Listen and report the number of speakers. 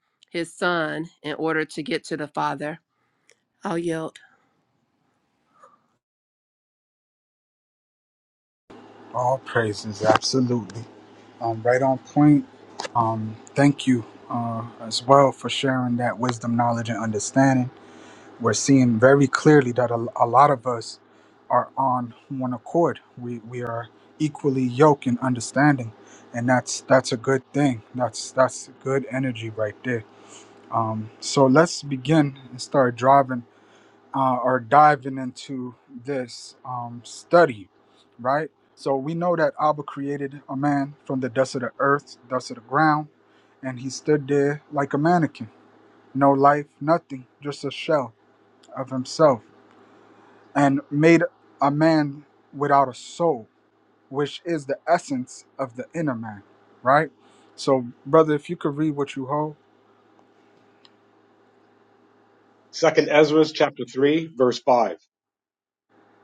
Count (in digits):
3